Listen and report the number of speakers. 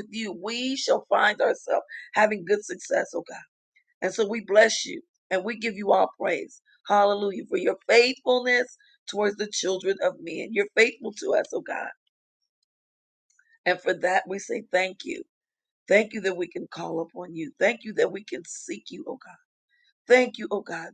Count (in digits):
1